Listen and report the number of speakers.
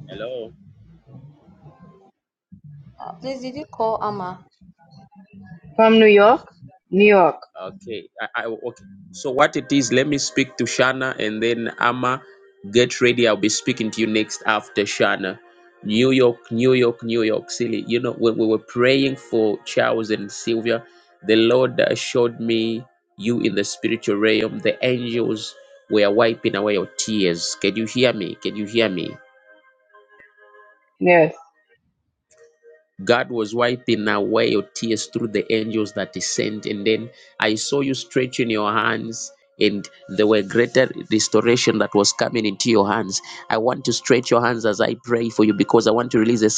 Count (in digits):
3